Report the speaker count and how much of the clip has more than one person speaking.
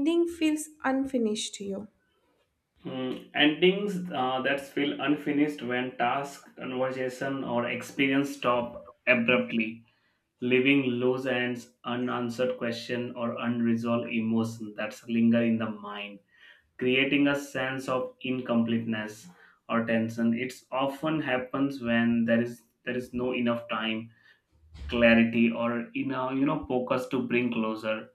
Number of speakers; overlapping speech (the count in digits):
2, no overlap